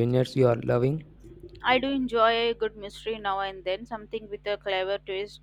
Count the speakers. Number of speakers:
two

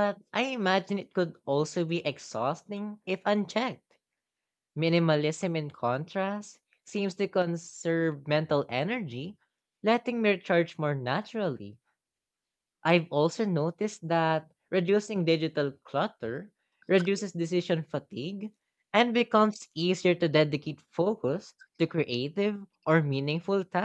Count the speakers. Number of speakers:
one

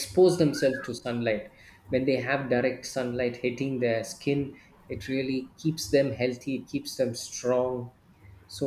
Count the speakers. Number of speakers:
one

